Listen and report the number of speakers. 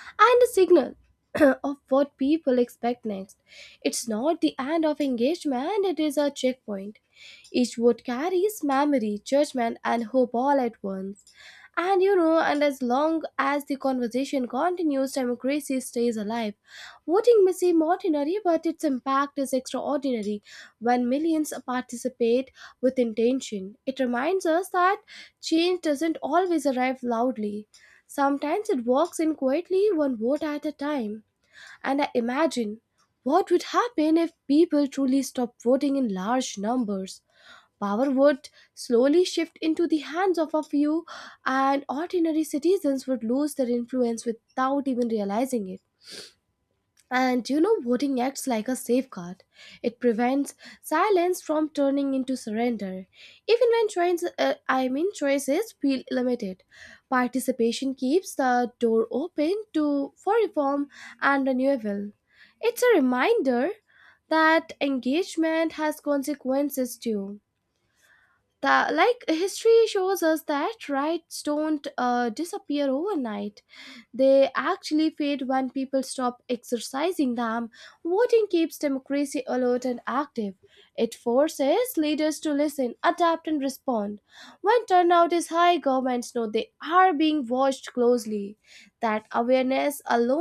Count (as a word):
one